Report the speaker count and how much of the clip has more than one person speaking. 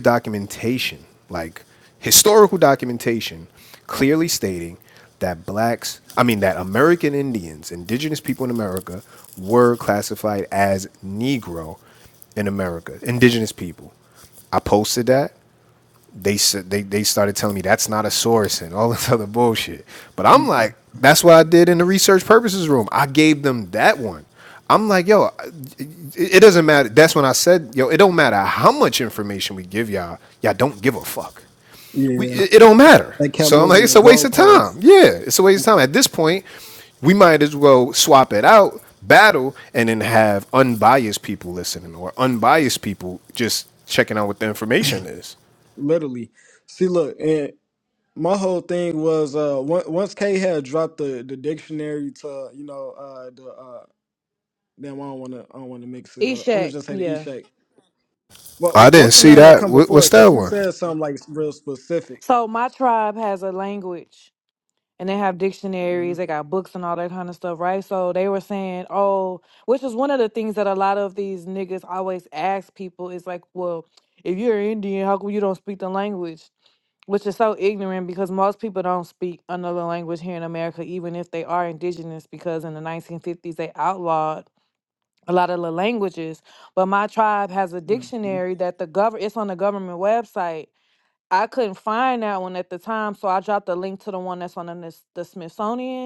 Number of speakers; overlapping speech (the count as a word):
three, about 6%